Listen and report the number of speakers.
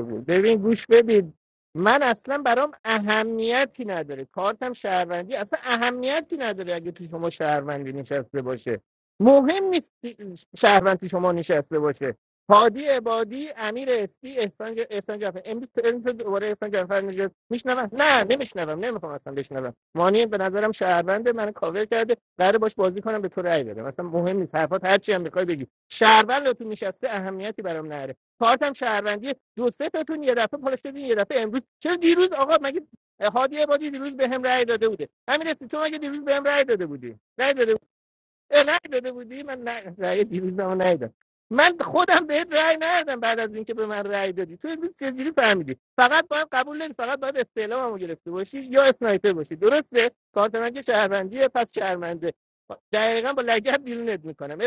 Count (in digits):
1